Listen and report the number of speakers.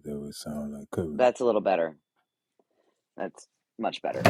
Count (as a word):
two